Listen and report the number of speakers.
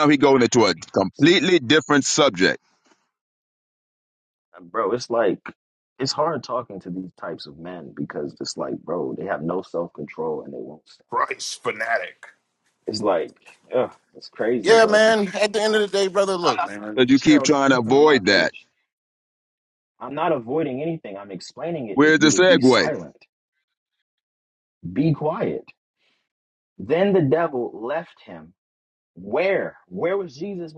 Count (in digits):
3